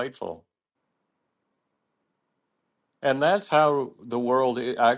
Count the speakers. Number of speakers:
1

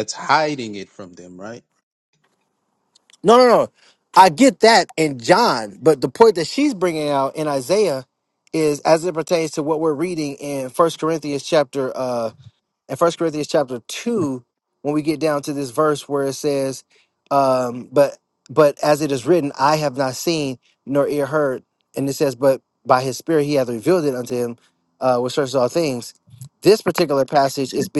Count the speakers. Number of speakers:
2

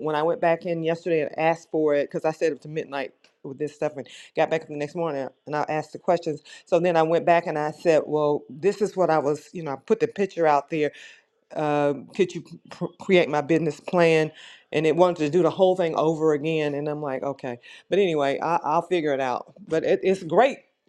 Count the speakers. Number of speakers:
1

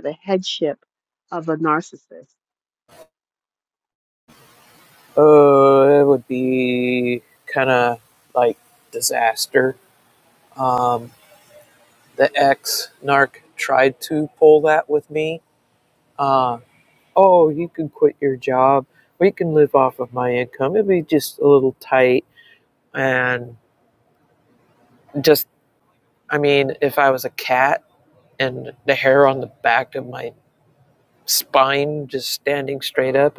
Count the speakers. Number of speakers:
2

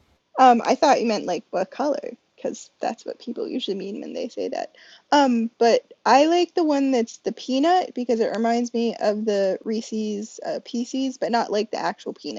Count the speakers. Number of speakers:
1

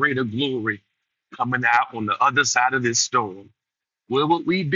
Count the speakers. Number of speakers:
1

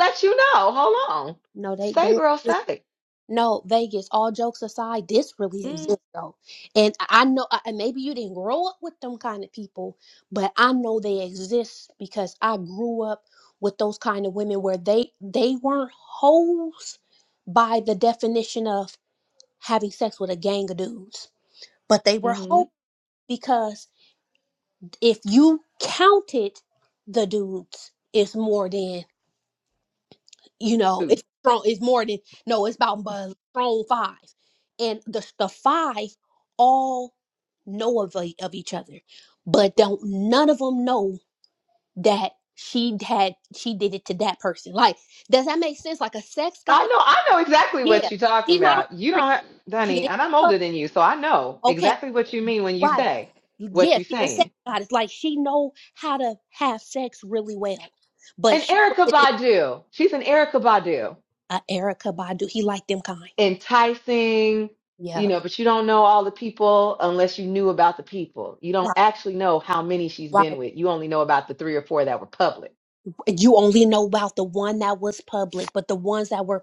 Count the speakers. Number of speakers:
2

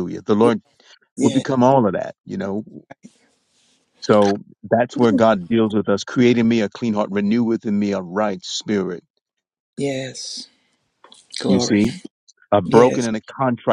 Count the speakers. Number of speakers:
2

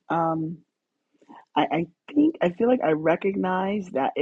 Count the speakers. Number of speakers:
1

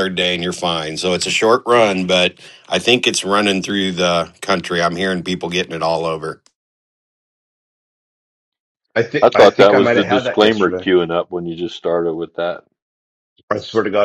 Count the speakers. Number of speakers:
3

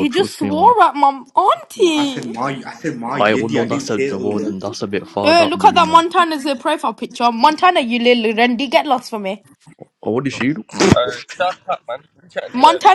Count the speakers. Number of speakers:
4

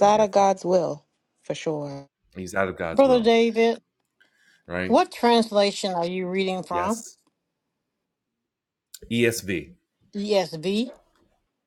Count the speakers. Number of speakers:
3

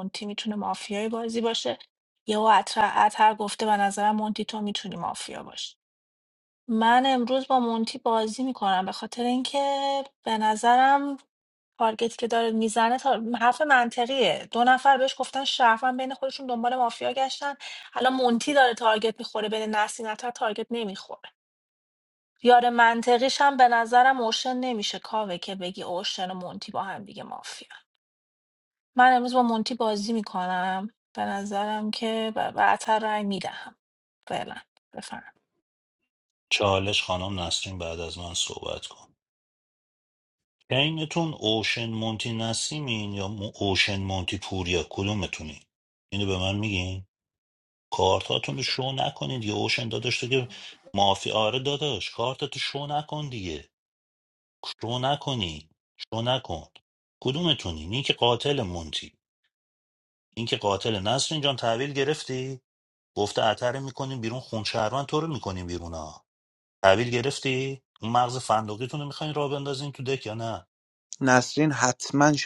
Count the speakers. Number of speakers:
3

